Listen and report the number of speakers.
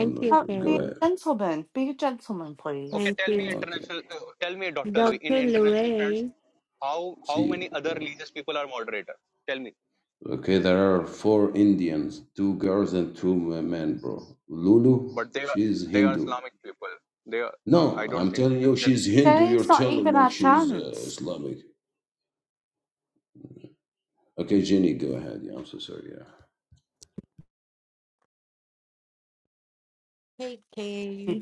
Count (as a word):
four